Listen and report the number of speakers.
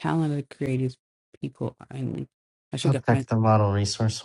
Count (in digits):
2